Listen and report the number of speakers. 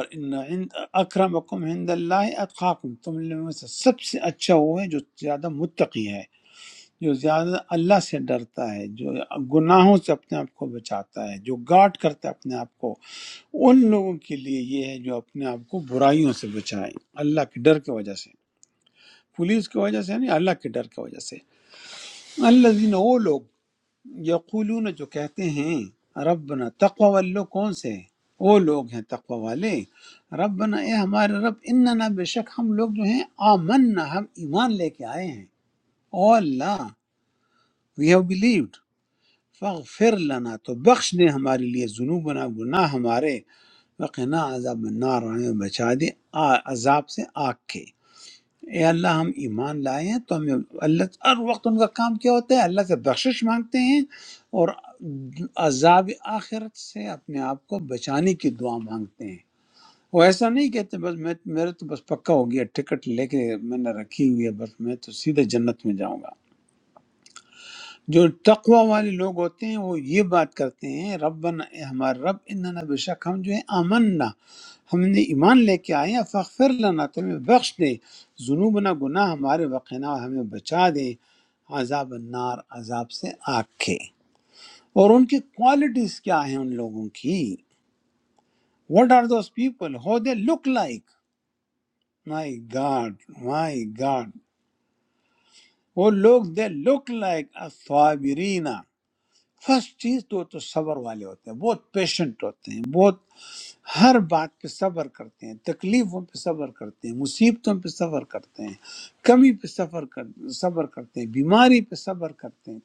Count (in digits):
1